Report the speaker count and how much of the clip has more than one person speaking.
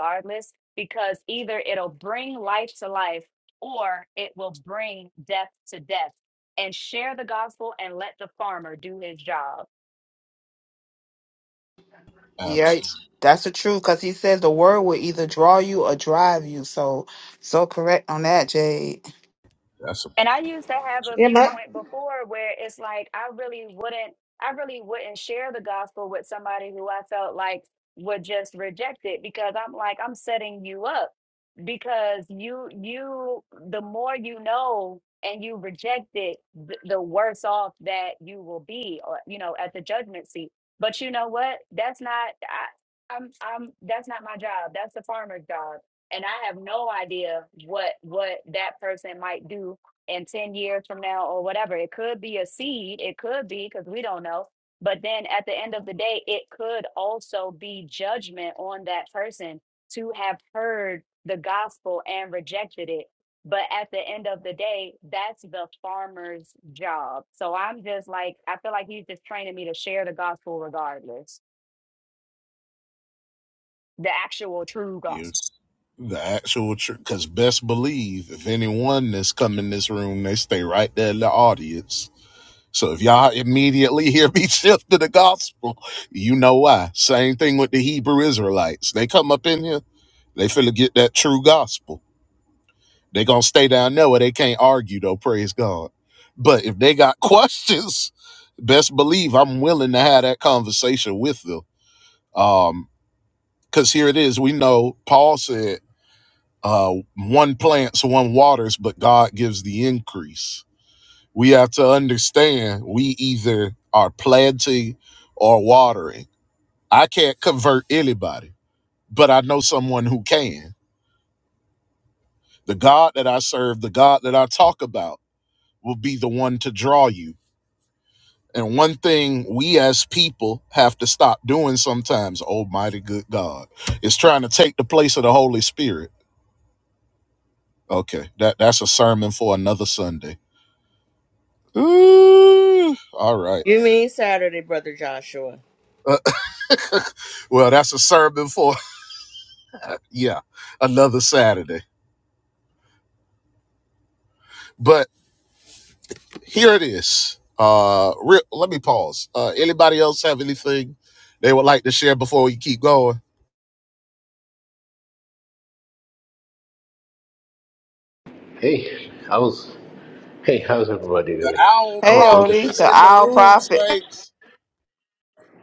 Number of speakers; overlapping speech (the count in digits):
5, about 2%